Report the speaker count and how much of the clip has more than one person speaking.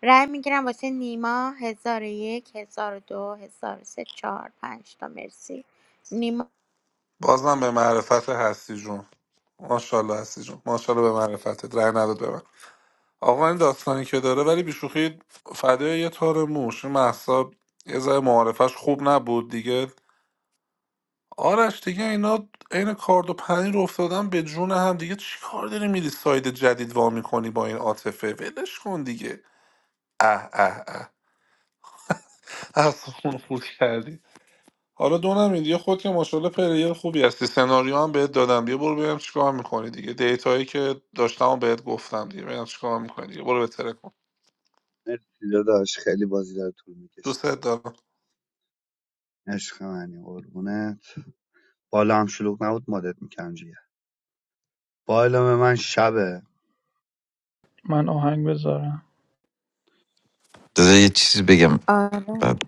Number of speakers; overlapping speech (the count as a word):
five, under 1%